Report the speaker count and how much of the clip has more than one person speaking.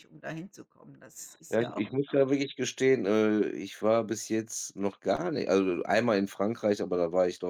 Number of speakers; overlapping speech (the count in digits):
2, about 9%